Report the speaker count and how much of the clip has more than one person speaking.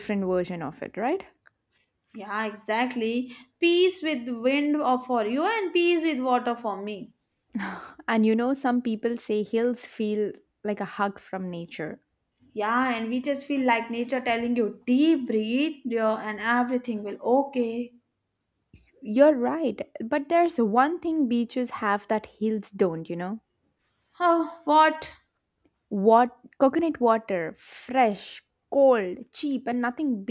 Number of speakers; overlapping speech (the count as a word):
two, no overlap